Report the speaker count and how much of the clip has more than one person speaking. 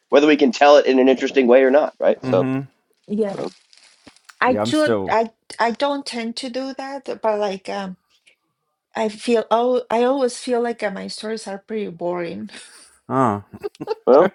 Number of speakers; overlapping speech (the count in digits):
3, about 7%